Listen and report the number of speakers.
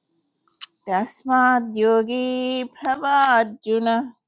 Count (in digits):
1